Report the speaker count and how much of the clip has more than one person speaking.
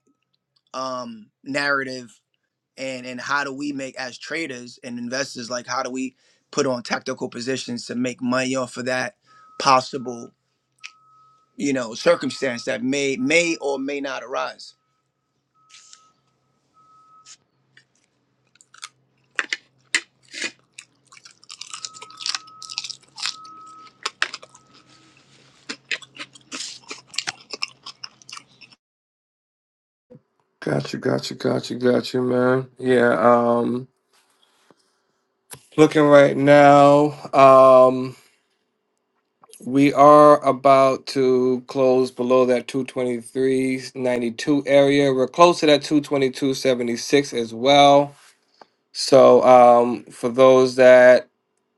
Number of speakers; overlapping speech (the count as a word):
two, no overlap